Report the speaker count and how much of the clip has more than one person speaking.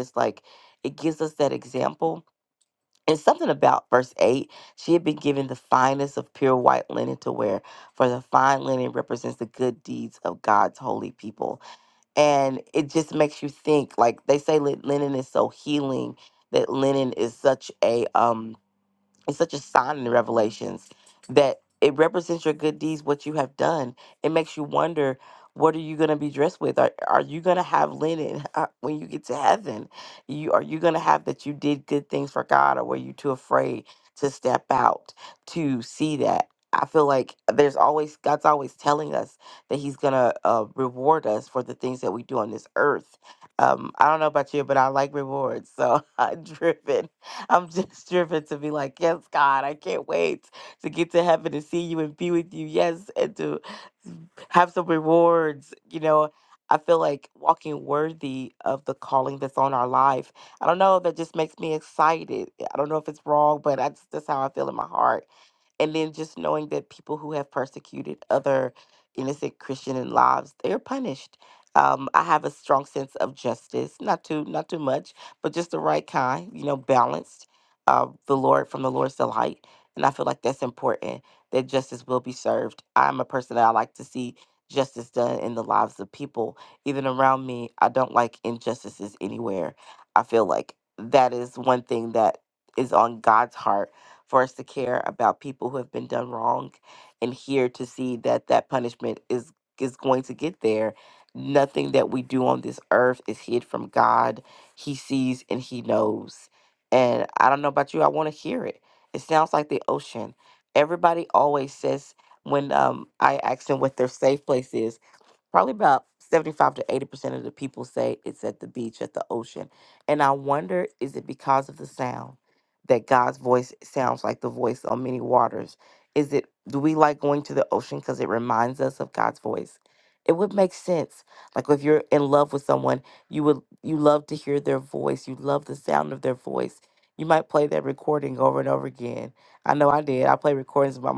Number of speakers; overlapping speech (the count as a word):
one, no overlap